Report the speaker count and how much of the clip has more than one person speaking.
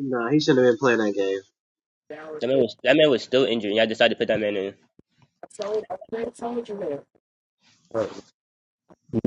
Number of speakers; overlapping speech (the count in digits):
3, no overlap